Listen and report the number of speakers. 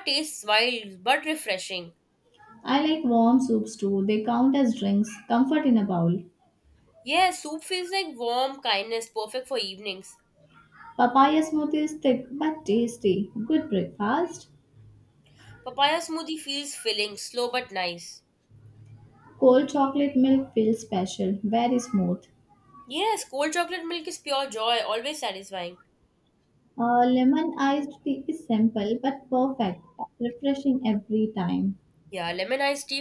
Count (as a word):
two